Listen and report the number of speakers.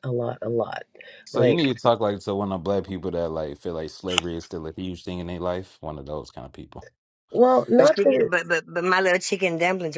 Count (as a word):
three